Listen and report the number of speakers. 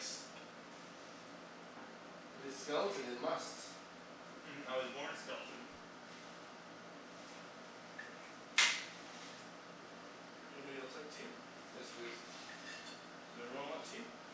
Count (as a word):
three